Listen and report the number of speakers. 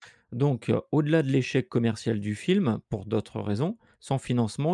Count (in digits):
1